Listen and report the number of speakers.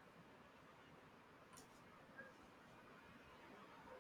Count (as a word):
zero